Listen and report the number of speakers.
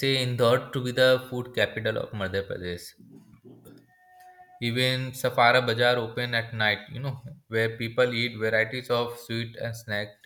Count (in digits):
1